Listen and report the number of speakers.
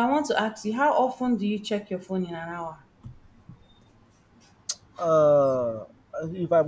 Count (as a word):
two